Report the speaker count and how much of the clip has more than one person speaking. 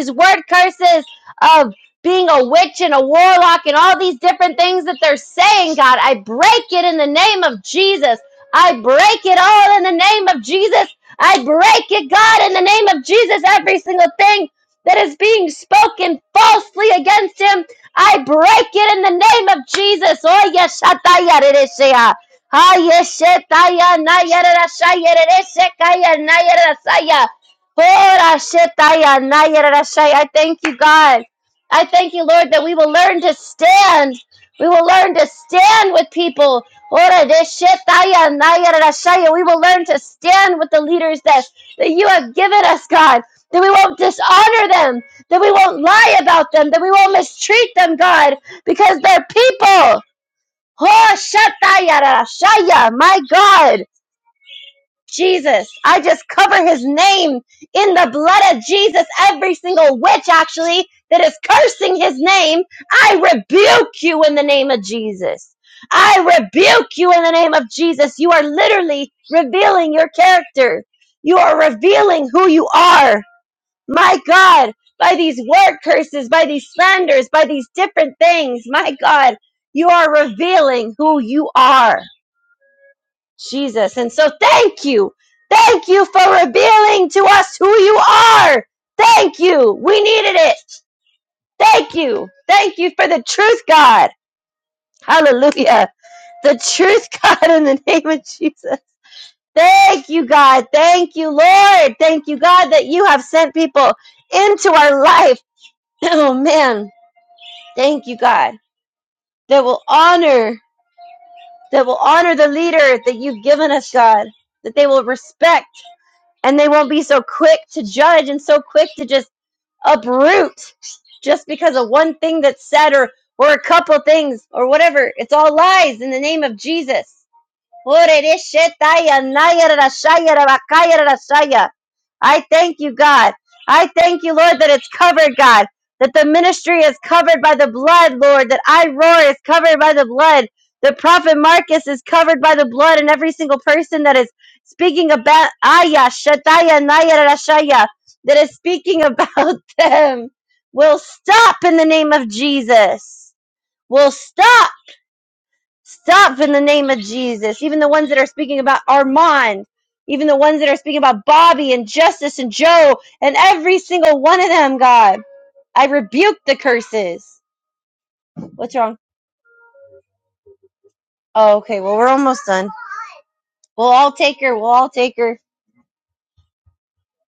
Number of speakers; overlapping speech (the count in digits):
1, no overlap